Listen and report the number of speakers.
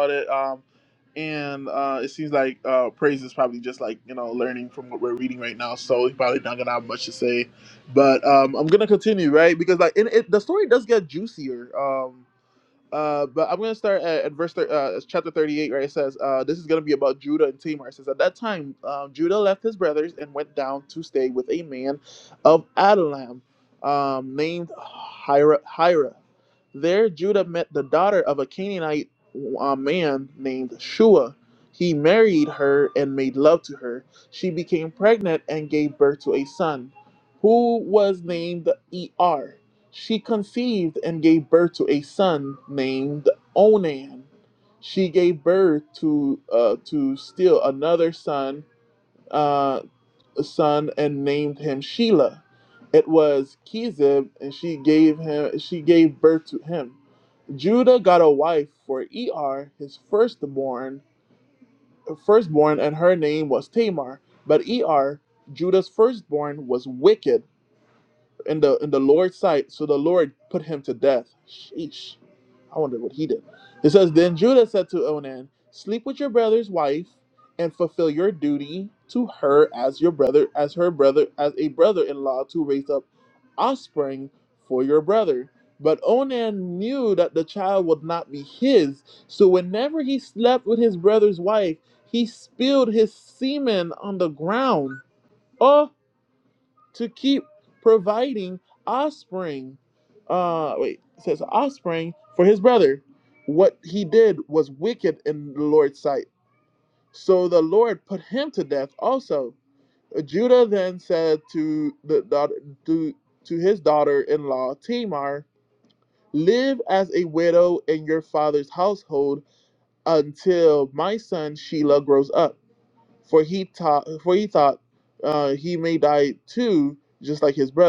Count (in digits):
1